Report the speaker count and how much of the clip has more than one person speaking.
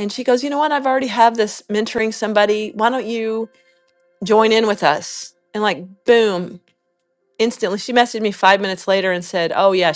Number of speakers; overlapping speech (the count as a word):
one, no overlap